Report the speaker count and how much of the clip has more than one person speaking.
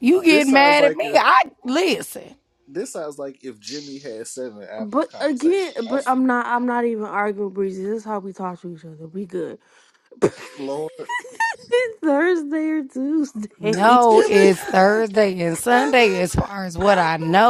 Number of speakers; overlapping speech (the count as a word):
three, about 28%